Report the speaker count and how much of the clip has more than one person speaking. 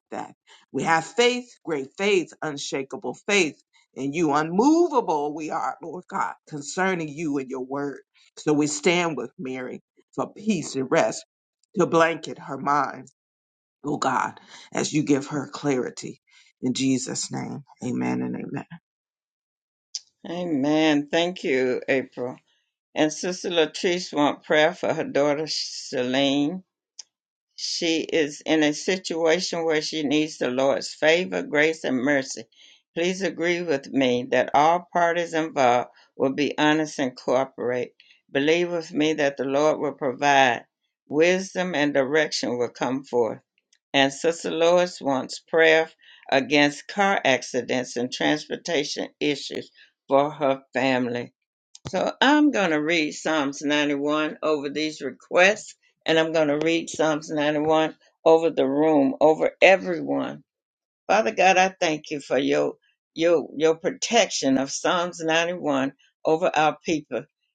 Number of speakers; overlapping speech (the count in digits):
2, no overlap